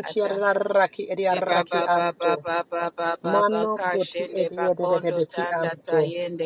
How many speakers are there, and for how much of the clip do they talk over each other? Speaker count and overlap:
two, about 66%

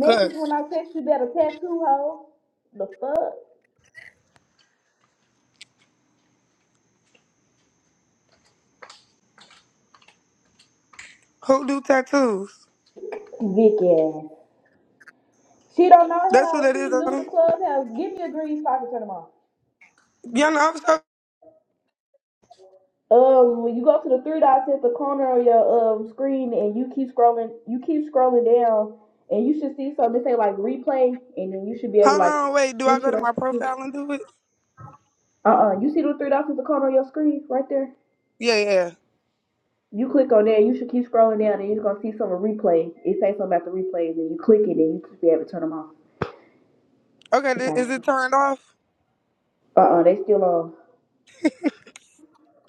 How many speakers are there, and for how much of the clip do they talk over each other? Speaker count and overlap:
two, about 5%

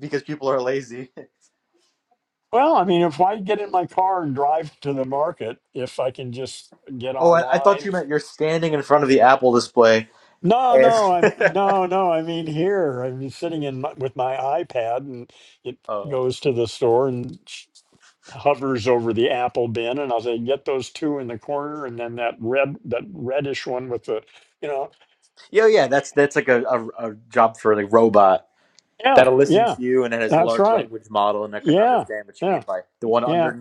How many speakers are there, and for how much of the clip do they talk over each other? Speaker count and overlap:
two, about 10%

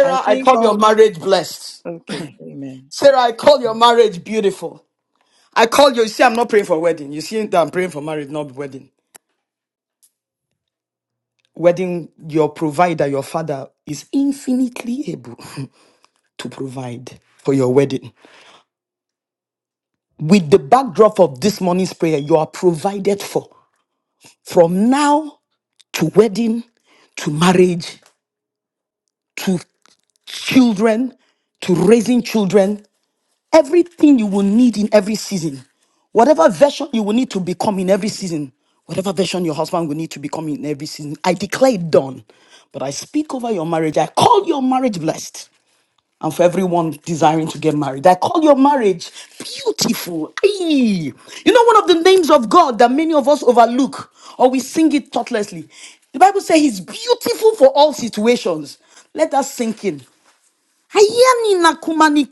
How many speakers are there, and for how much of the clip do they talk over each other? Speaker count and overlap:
two, about 1%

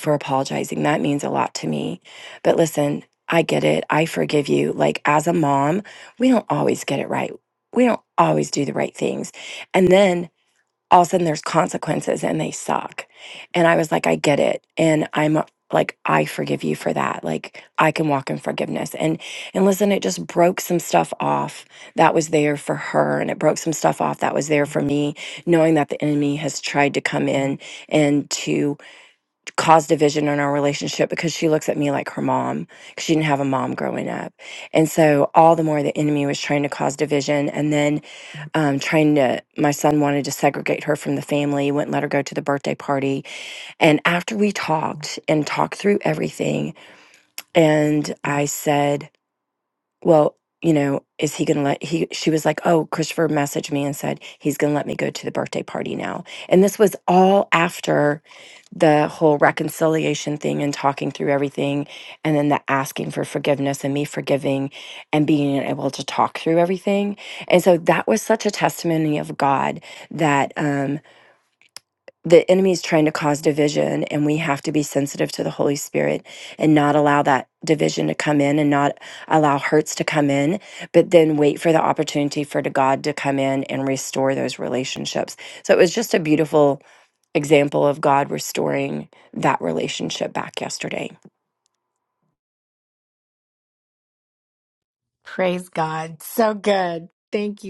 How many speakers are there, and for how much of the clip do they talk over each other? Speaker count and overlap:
two, no overlap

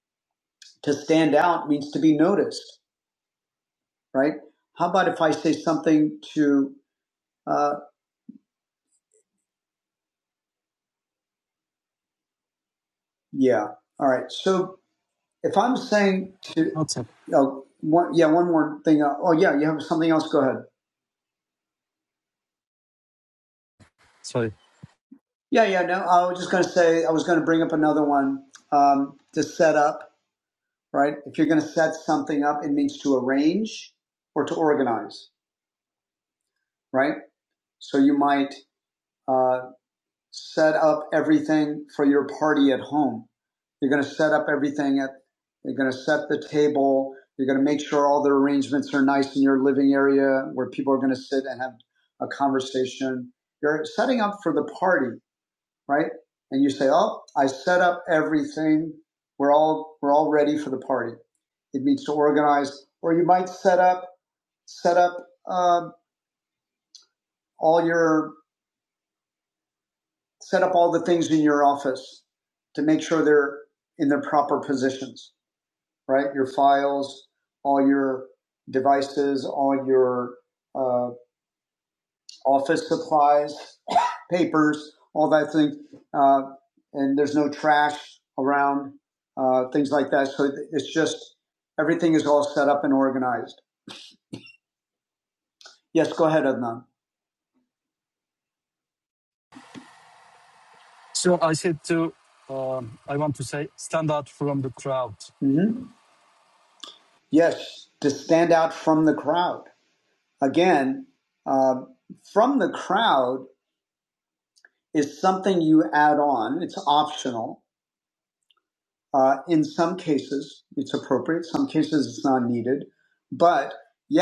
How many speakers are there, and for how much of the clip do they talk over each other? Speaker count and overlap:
two, under 1%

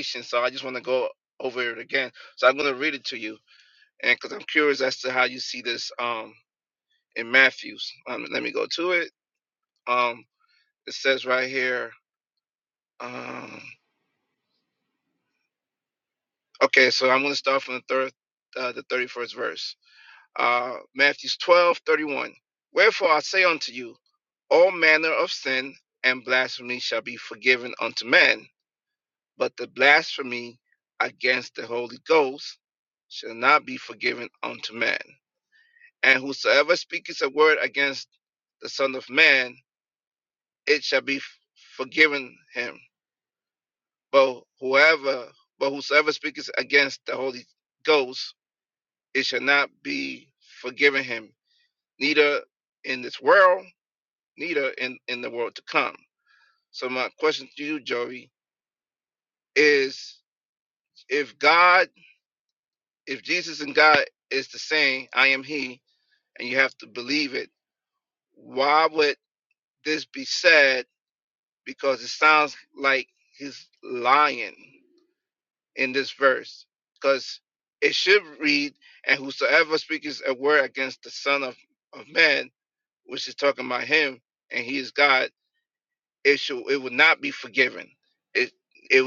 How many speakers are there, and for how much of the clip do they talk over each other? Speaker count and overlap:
one, no overlap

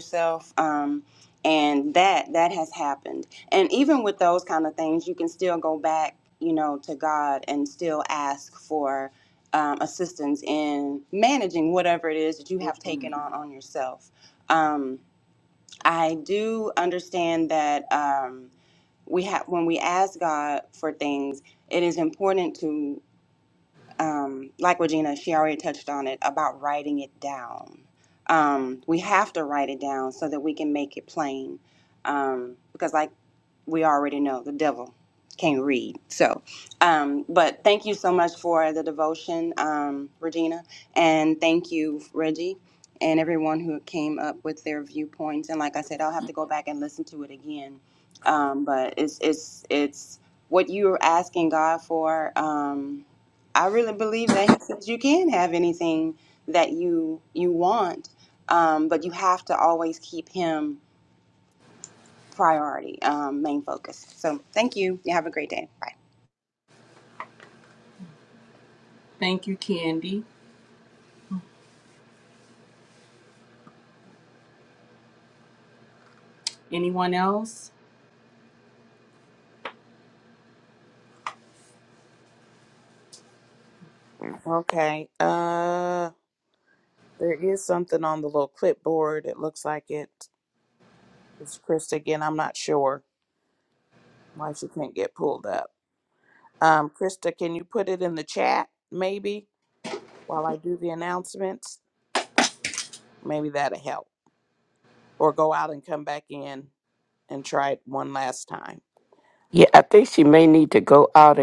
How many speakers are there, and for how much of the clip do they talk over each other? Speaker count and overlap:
four, no overlap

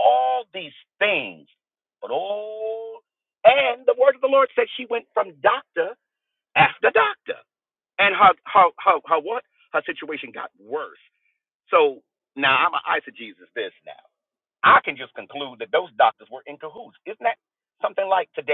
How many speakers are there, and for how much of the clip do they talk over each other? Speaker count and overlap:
one, no overlap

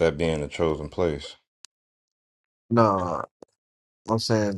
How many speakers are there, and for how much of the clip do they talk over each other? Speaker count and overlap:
two, no overlap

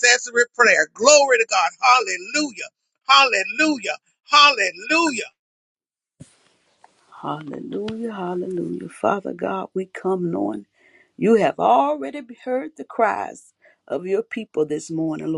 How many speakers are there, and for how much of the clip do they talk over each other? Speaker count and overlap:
two, no overlap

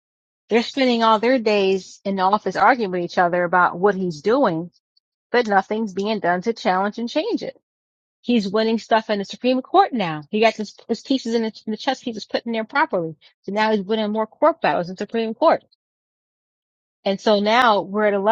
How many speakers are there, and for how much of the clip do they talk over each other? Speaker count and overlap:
one, no overlap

